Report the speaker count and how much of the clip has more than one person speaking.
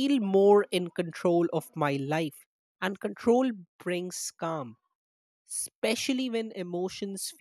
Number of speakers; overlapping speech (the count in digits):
1, no overlap